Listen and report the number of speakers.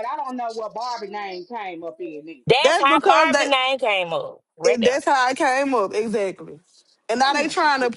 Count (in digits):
3